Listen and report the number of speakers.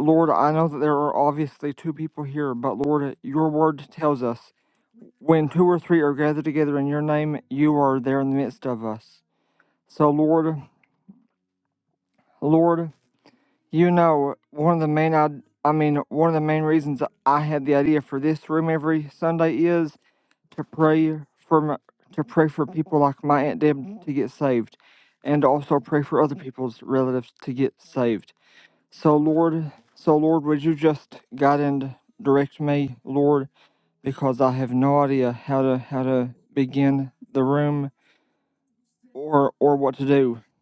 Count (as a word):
one